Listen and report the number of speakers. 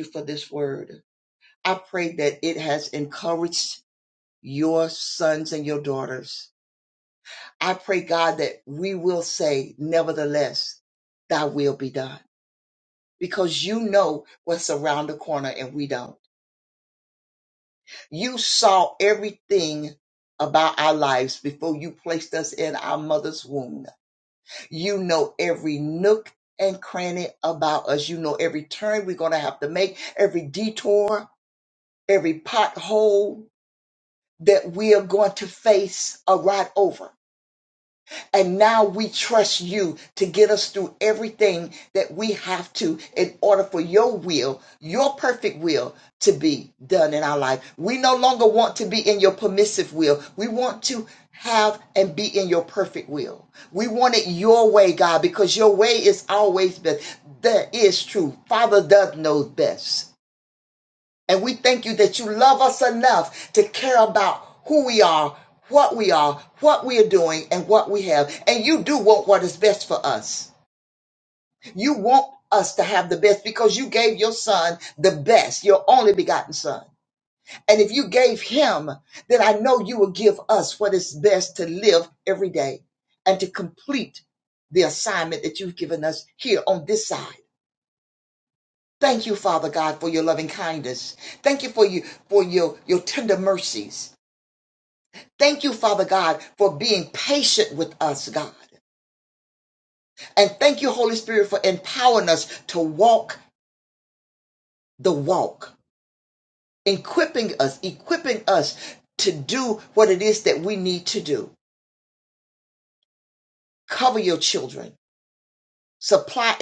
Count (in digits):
1